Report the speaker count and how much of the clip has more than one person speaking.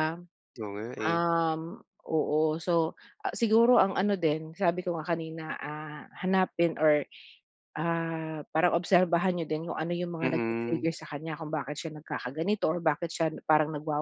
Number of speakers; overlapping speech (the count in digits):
2, about 6%